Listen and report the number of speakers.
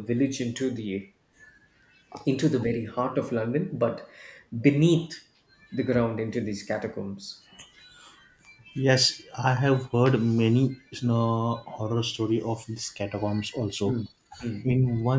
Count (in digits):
2